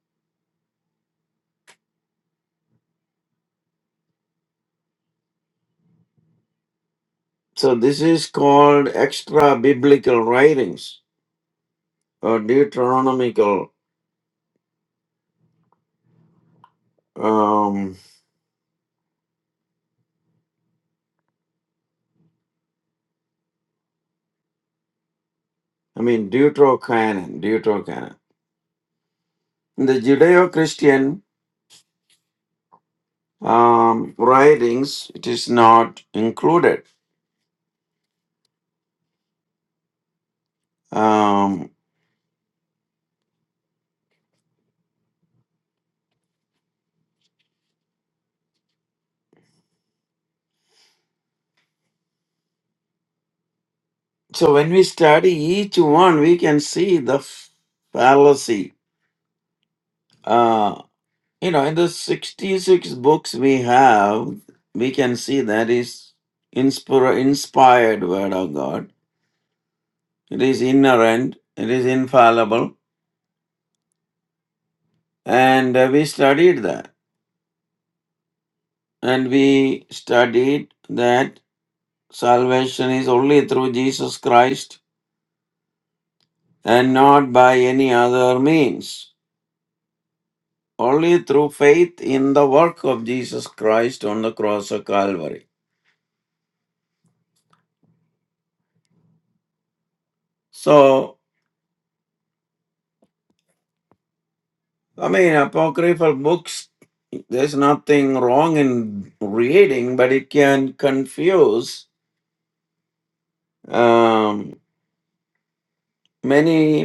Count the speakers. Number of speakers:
1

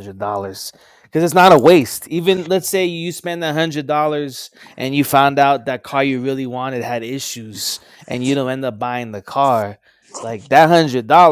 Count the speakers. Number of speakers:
1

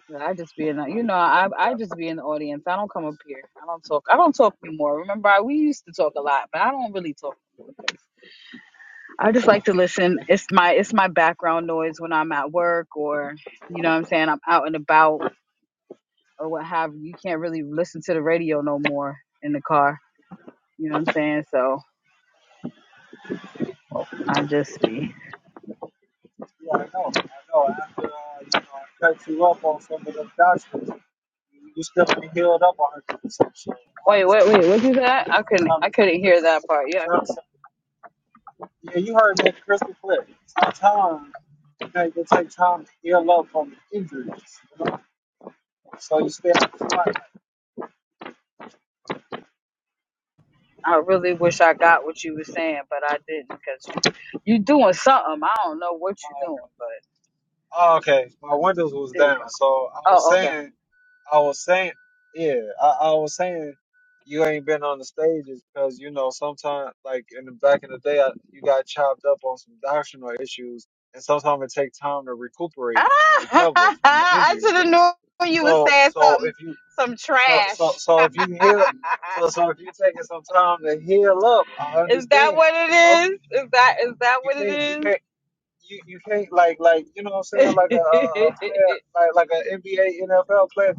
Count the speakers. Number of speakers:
2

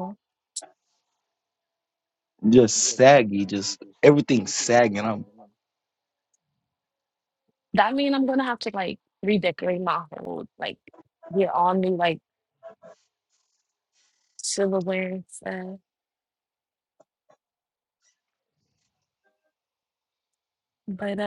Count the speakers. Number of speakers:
2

